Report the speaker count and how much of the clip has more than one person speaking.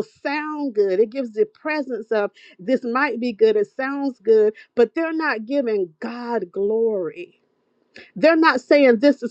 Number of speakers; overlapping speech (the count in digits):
1, no overlap